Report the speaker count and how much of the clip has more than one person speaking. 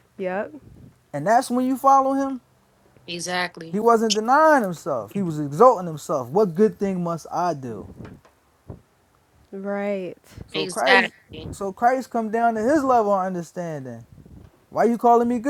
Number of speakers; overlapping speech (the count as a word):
three, about 3%